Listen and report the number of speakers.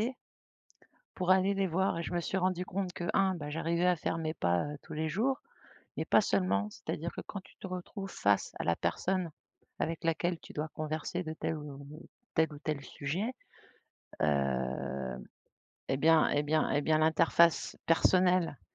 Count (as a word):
one